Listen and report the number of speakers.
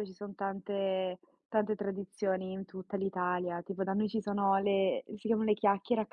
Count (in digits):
1